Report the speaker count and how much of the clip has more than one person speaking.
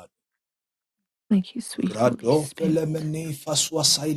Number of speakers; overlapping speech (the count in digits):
2, about 27%